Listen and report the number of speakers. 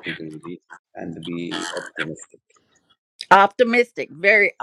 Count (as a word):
two